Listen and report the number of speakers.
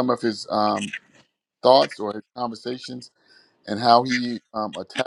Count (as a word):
one